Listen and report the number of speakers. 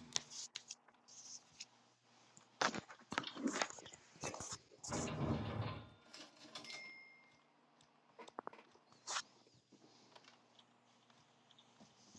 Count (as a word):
zero